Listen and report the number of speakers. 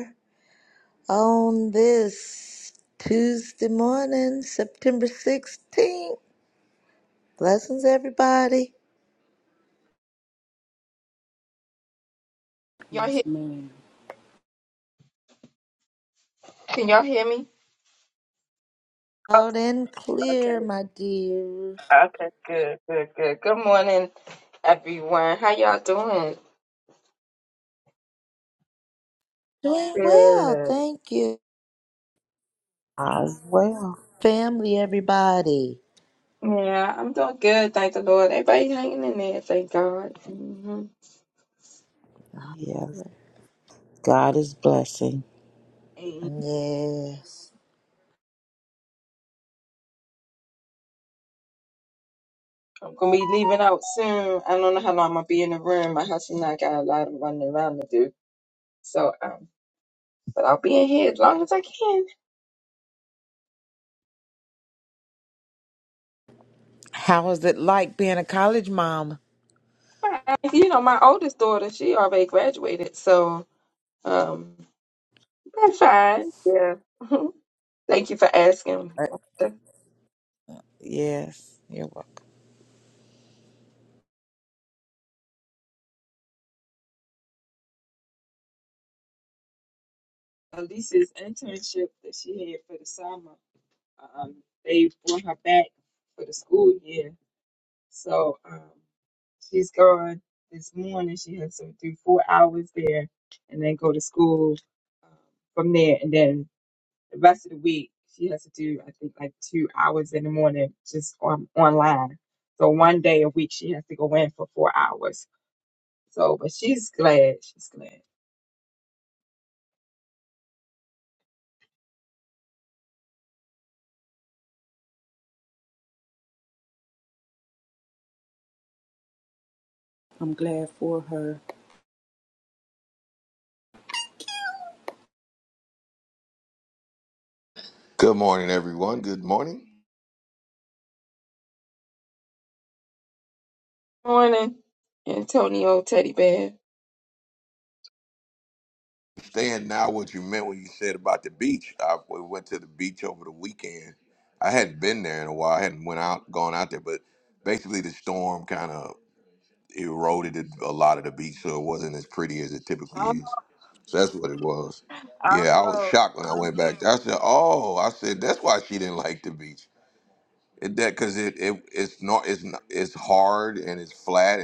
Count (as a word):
five